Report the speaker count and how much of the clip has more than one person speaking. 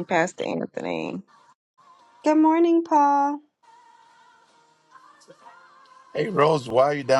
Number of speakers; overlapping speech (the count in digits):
3, no overlap